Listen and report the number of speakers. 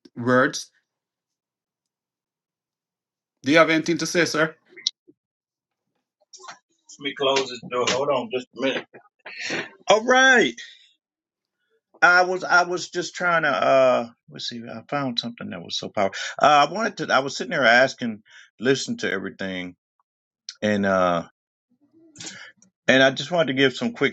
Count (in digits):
2